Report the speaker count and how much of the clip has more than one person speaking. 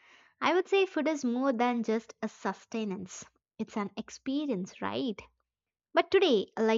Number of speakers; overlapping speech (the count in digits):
1, no overlap